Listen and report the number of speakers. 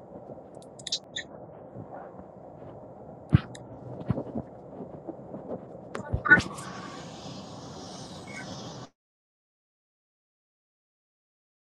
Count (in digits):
0